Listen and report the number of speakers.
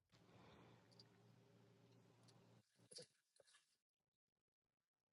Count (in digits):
0